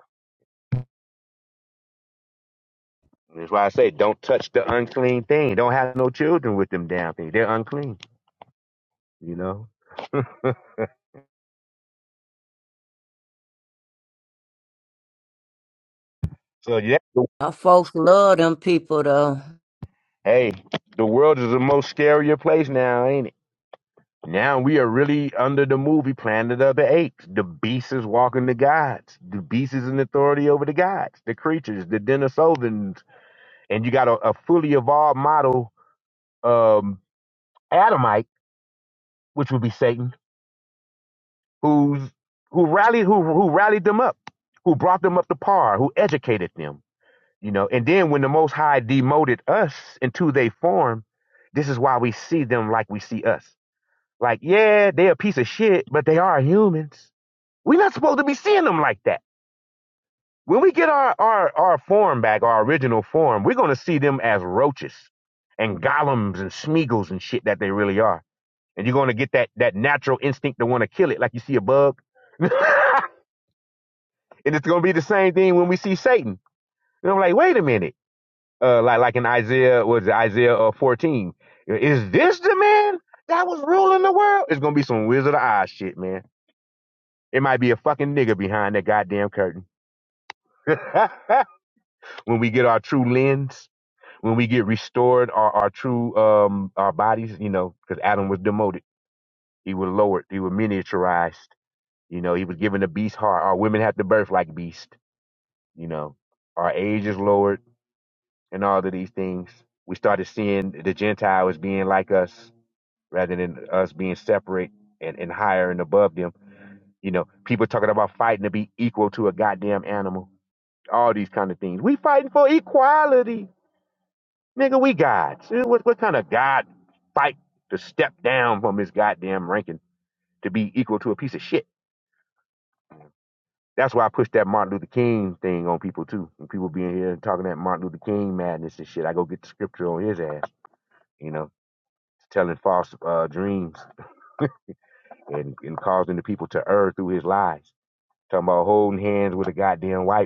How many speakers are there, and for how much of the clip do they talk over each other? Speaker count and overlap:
two, no overlap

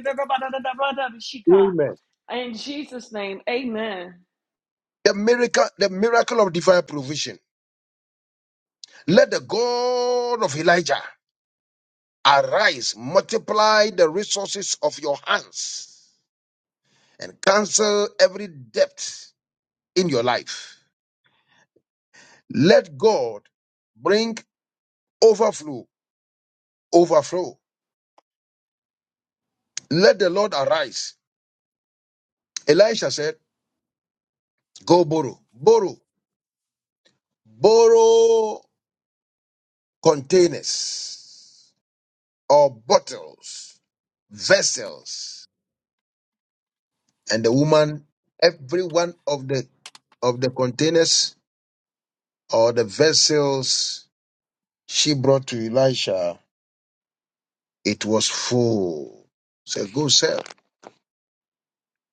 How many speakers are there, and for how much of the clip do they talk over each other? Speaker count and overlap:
two, under 1%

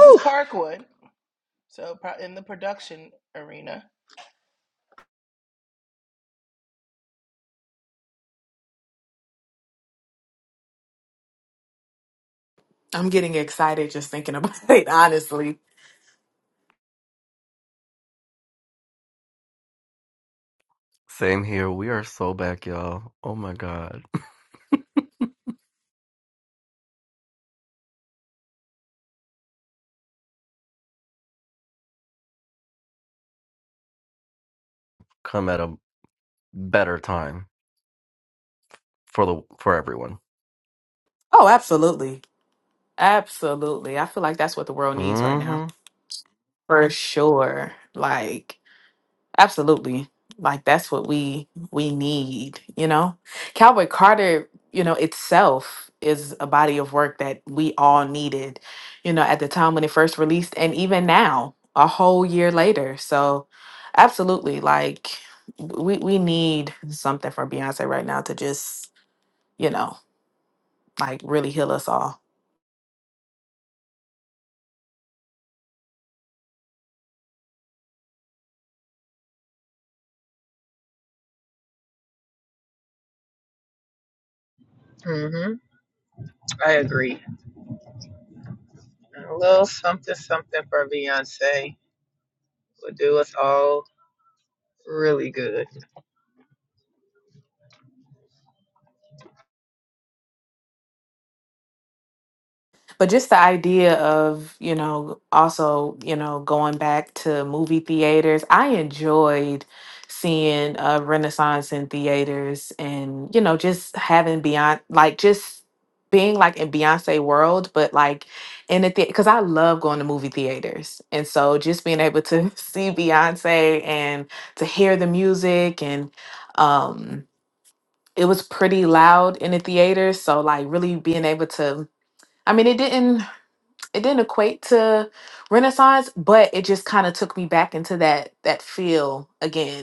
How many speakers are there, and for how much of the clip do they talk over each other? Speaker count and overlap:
four, about 1%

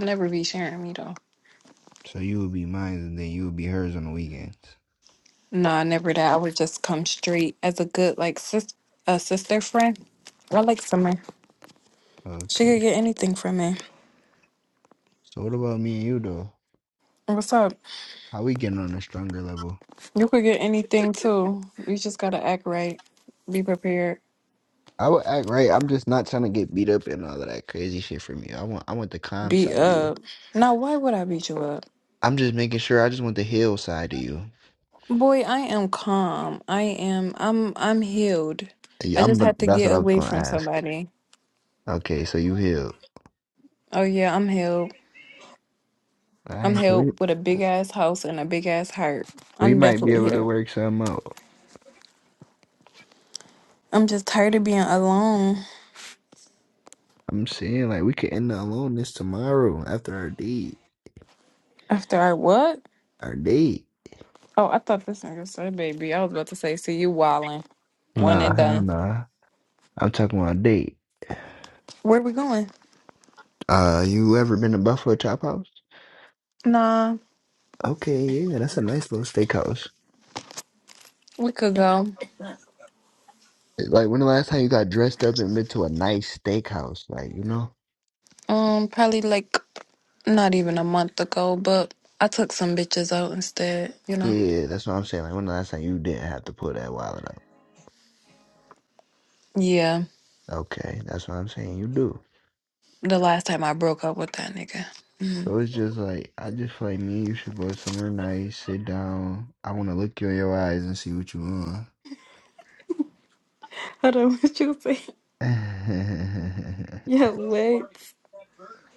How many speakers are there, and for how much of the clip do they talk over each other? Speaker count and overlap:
two, about 4%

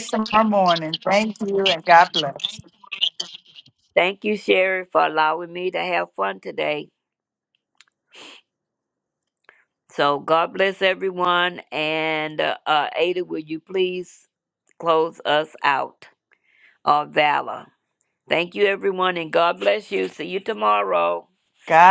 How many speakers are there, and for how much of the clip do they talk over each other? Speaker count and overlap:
two, no overlap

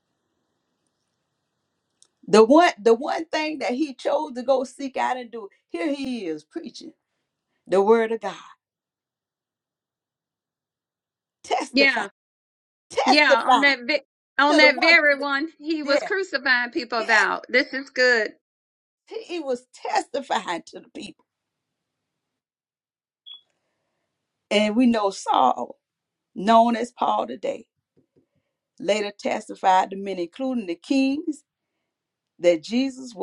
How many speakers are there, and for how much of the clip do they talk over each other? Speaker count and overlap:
two, about 6%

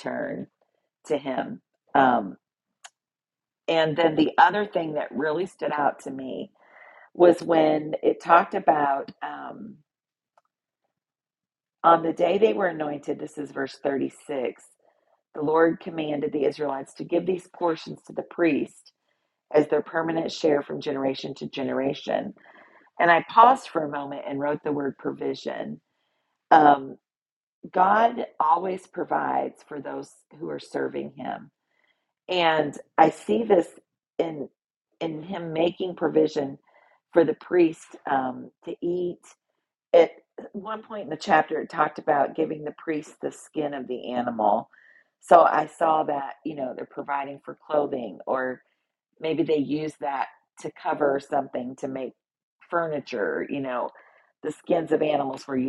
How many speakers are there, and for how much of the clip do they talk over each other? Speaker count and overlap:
one, no overlap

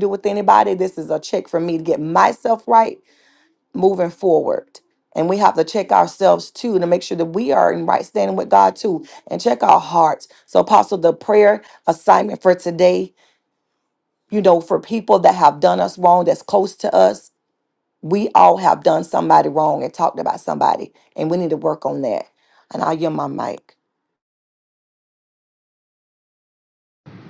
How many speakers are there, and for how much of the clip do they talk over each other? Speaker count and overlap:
one, no overlap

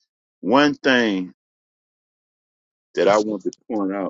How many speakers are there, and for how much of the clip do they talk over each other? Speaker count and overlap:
one, no overlap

